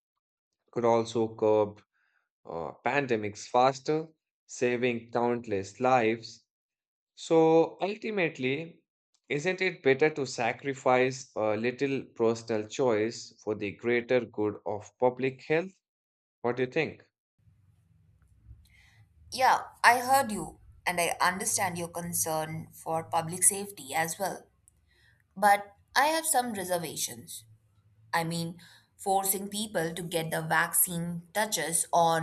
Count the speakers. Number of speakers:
2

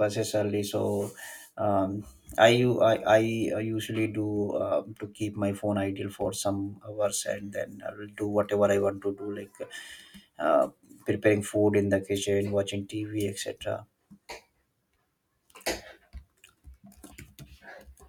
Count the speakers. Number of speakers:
1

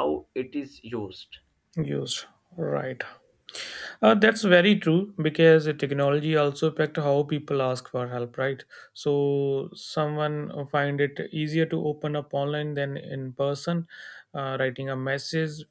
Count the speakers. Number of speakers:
2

